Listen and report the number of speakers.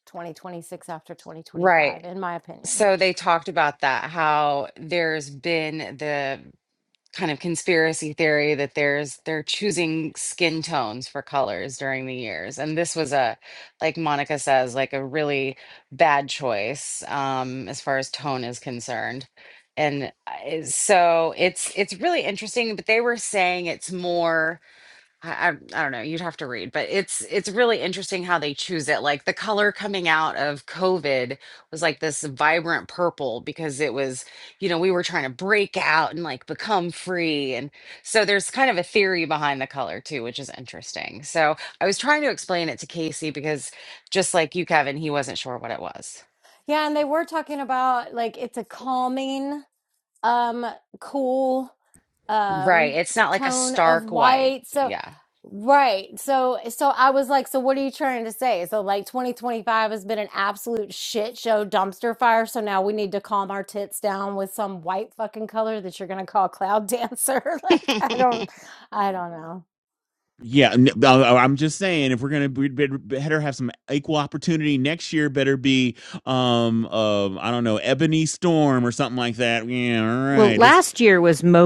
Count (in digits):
4